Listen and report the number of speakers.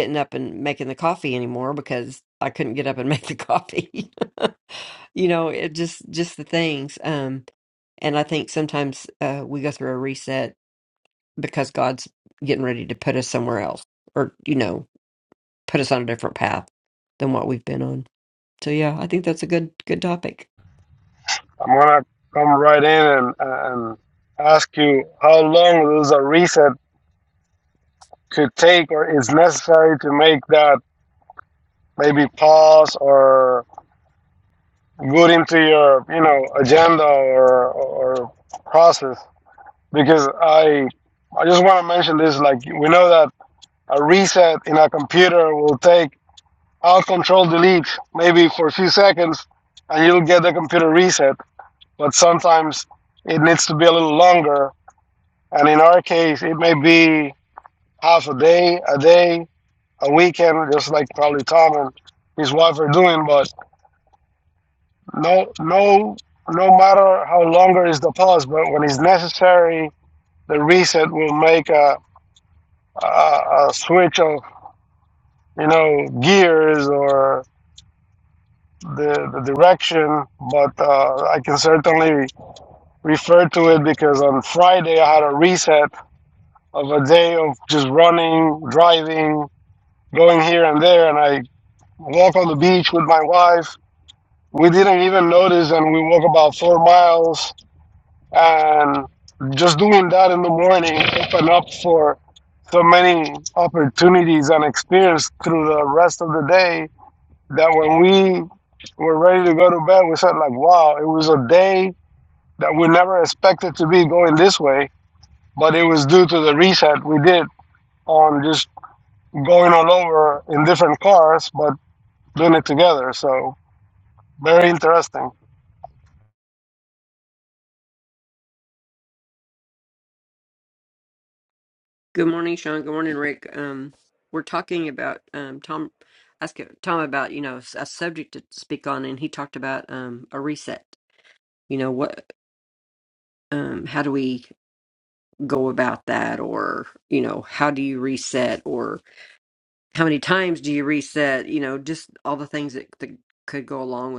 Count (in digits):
2